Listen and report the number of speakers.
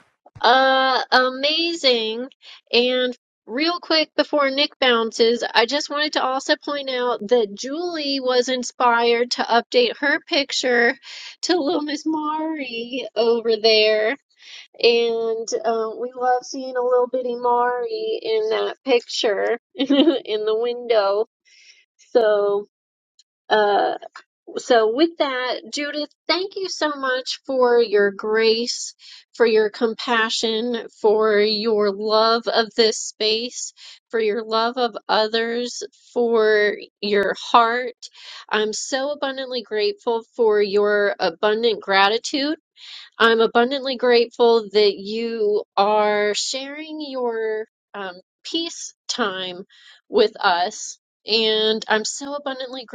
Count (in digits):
1